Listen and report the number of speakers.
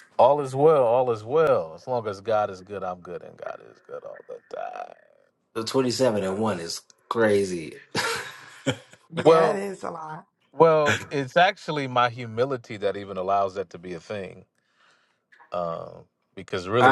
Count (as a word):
three